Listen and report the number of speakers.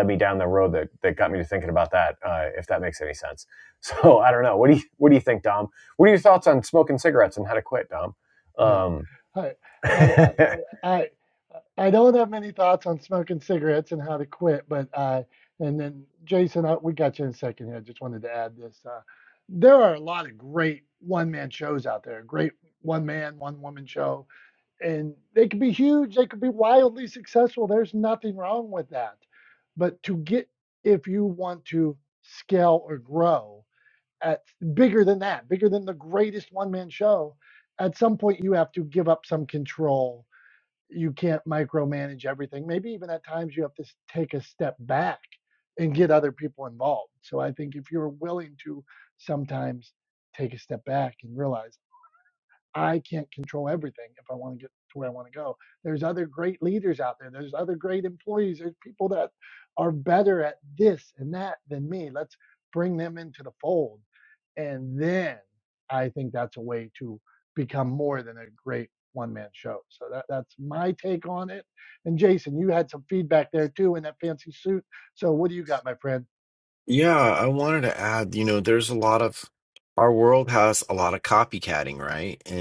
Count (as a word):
three